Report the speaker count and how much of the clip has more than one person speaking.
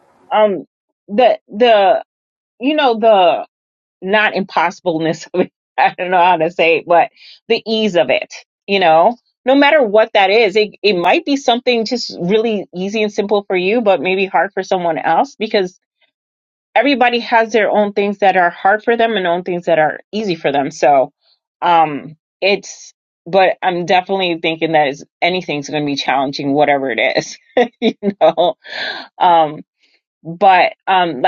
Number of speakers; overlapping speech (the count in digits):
1, no overlap